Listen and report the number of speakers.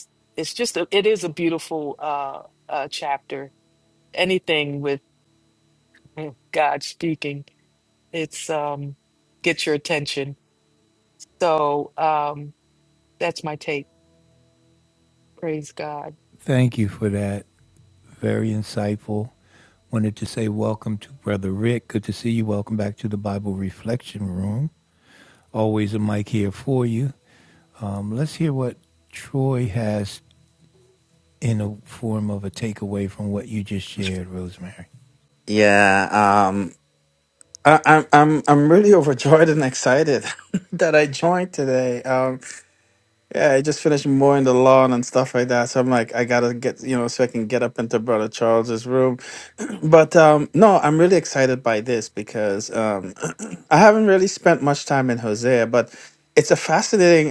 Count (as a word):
three